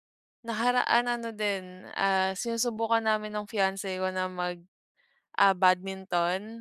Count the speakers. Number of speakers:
1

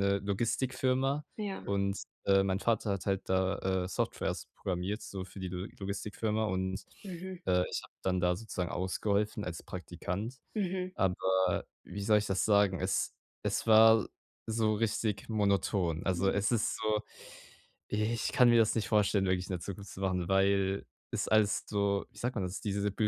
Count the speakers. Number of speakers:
2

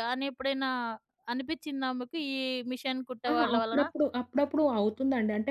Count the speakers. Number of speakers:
2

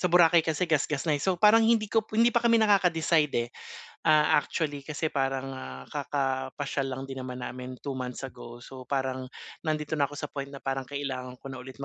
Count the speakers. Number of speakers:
1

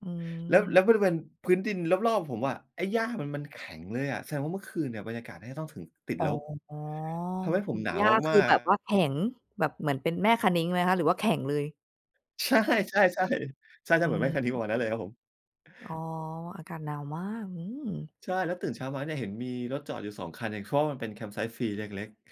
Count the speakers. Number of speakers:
2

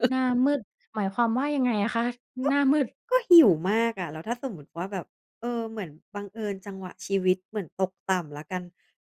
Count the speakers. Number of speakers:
2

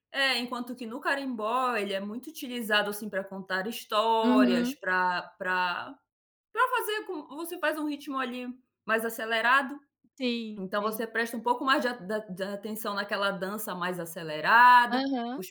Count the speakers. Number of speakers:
2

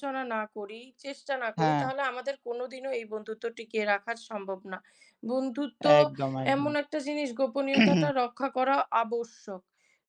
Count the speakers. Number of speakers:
2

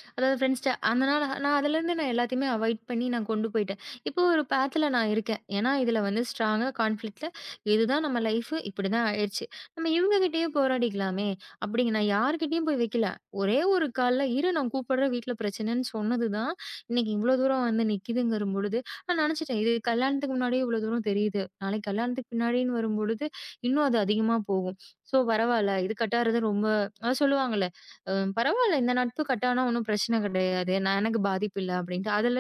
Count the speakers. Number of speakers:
1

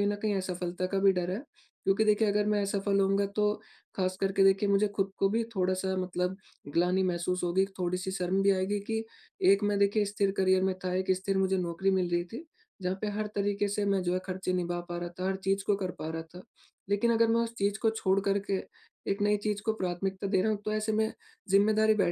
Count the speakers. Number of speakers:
1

